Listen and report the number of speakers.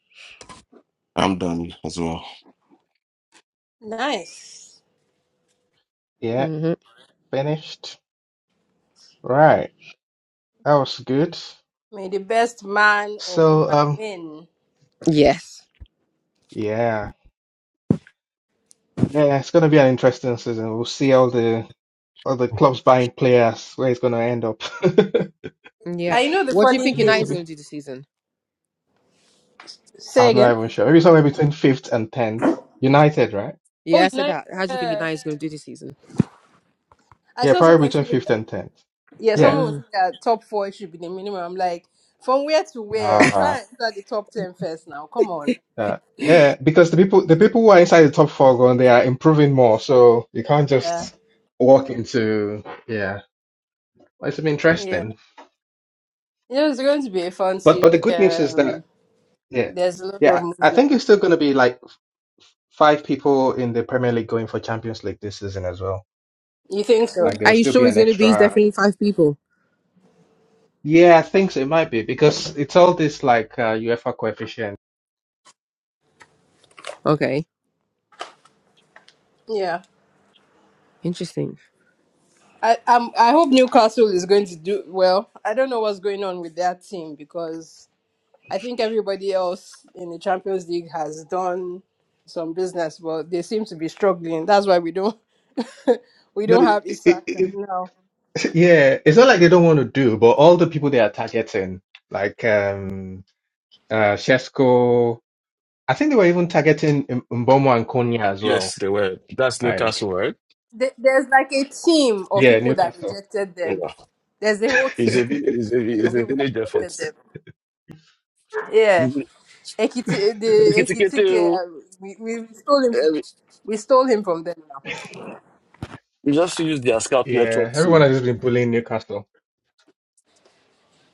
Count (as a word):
four